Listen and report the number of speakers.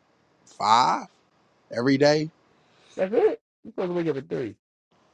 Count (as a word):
two